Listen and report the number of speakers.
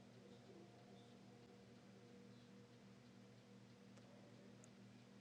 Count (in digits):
0